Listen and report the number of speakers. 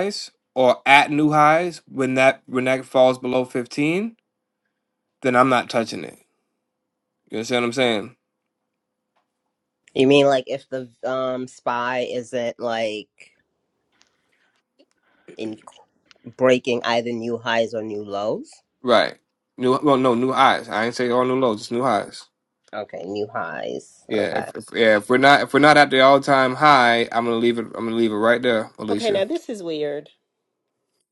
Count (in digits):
3